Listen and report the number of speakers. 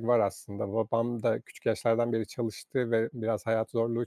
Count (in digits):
1